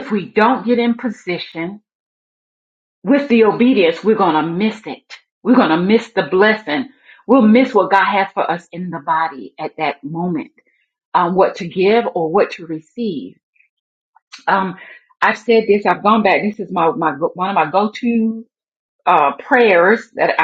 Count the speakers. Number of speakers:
1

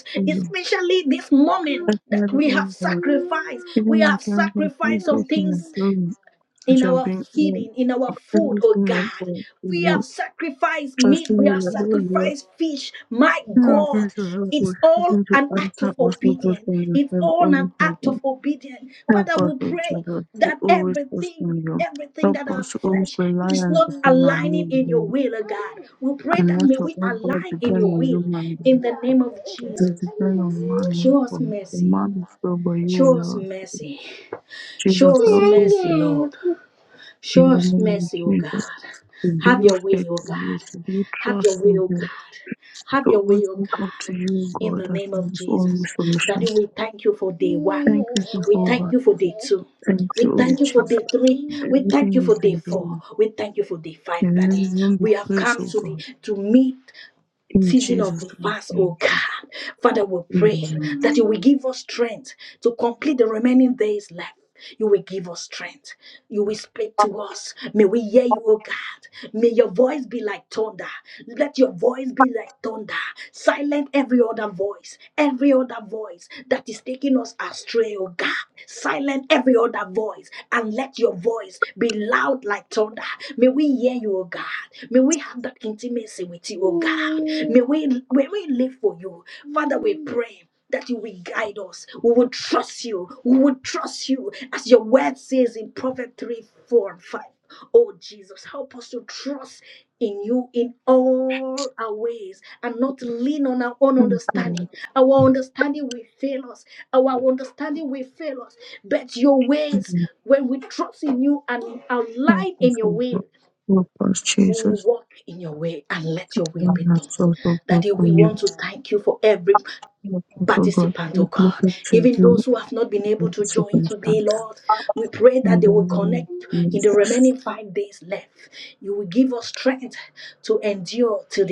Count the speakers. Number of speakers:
2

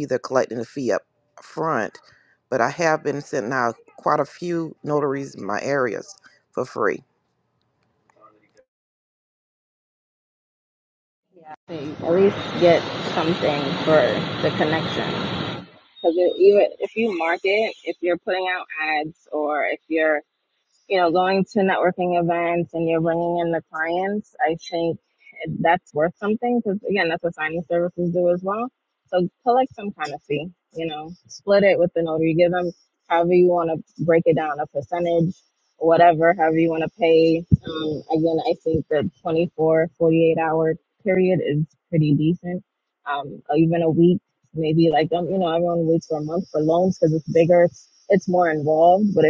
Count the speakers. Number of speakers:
2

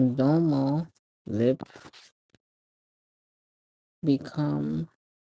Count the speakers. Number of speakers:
1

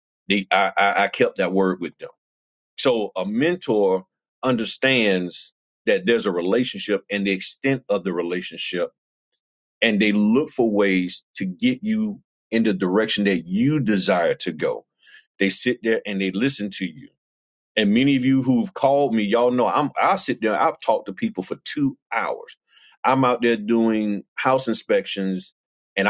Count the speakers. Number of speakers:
1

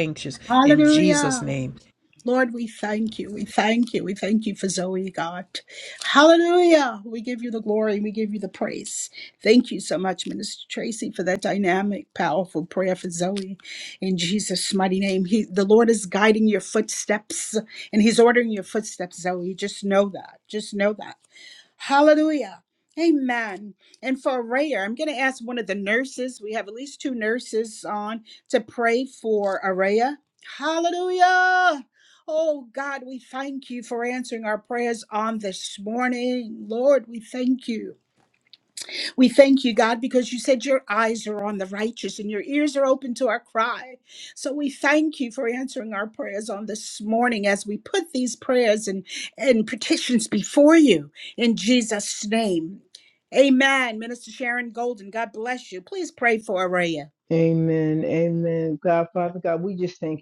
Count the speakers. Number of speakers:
3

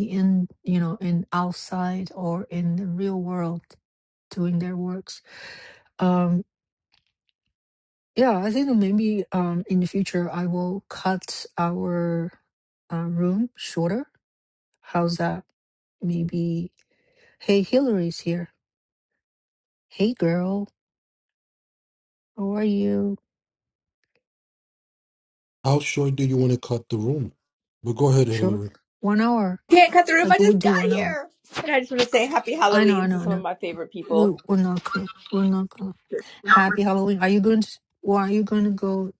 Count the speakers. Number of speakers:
3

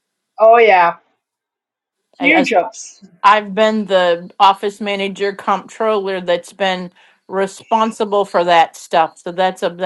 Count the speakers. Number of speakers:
2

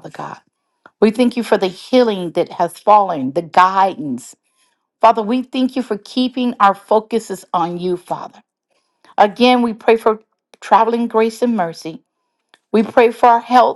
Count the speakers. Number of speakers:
1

